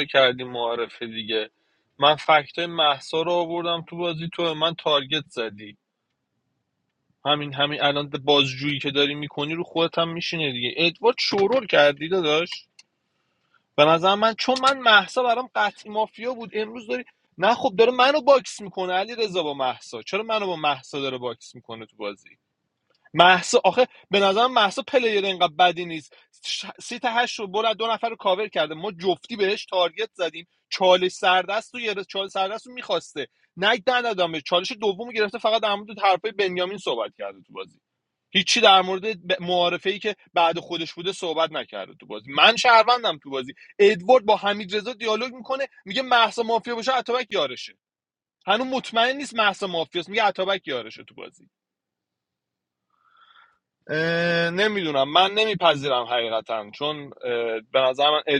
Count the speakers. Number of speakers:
1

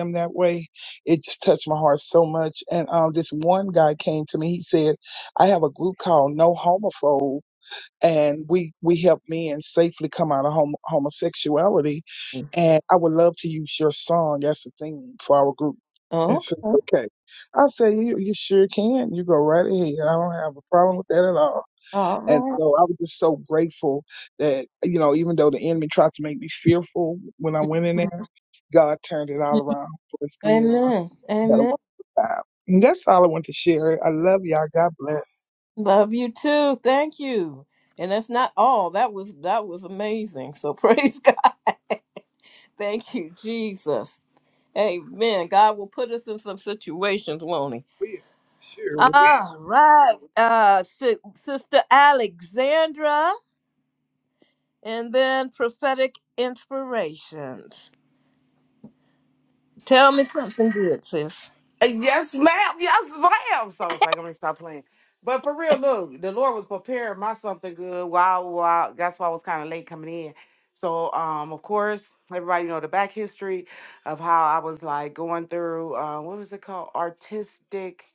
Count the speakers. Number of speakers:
3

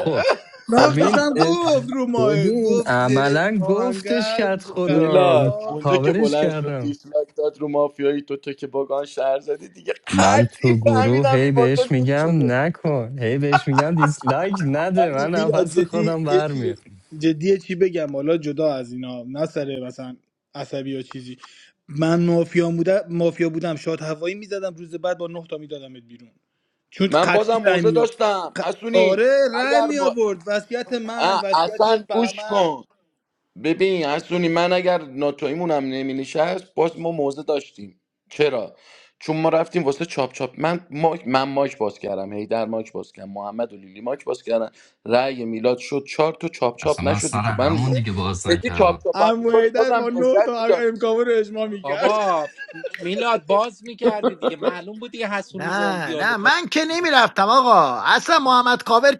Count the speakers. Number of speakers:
5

